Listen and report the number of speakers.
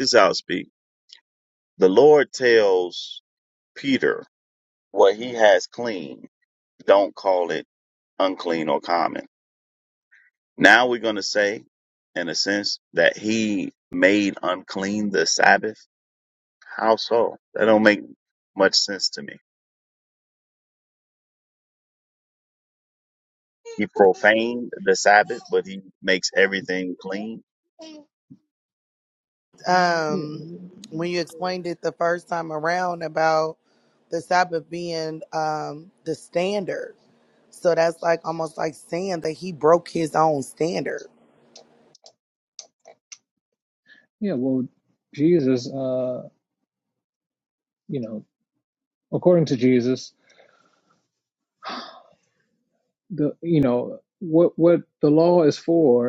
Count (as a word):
three